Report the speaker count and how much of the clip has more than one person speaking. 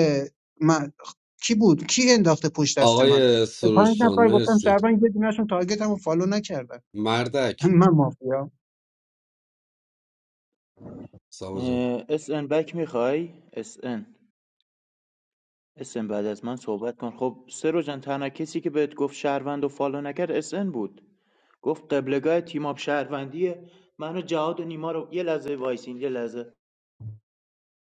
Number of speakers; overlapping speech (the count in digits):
3, about 6%